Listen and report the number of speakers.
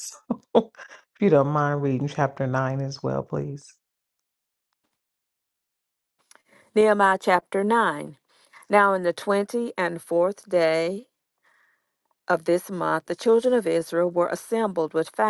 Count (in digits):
2